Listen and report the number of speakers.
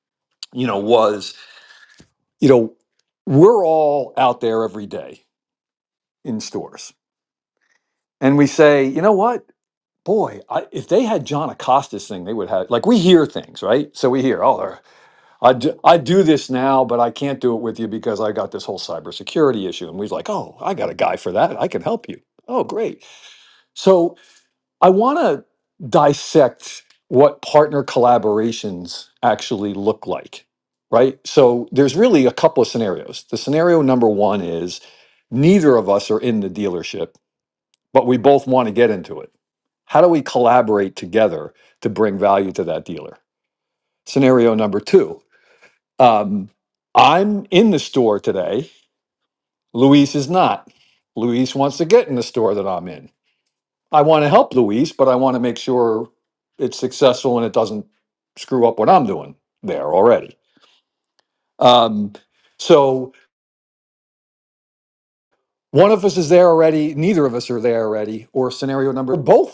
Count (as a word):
one